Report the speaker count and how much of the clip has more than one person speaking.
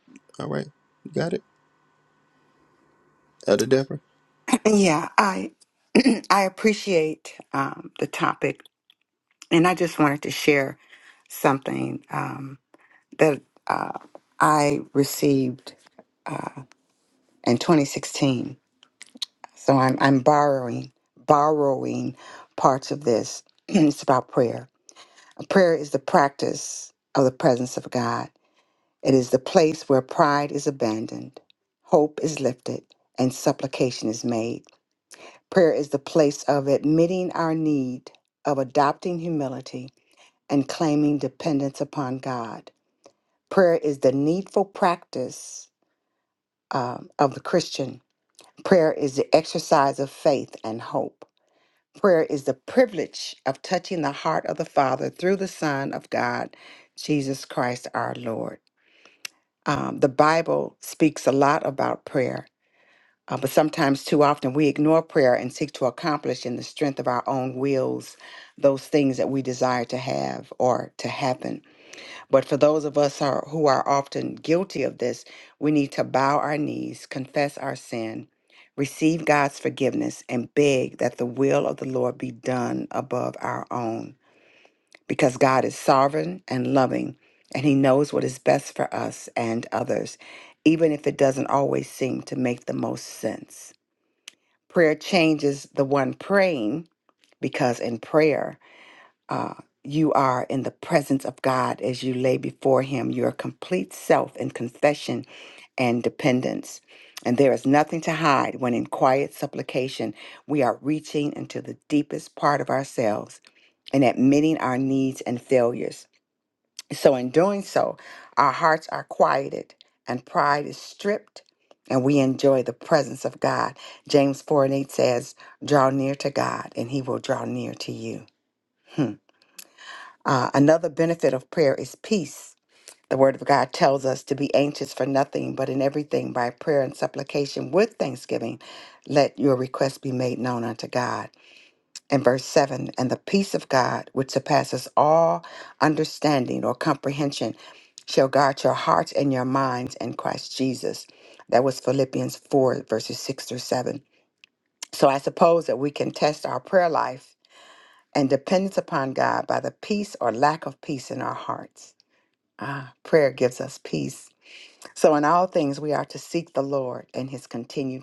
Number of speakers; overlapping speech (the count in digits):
2, no overlap